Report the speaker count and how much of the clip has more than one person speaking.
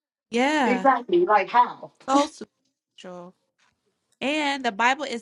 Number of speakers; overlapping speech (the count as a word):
two, about 5%